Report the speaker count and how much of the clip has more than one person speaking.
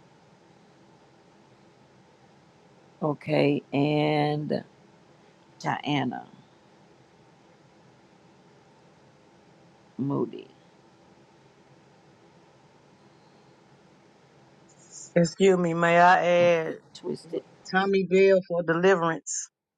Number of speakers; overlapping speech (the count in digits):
2, no overlap